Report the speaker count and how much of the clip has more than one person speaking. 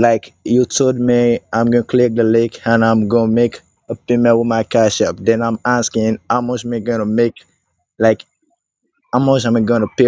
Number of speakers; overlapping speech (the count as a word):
one, no overlap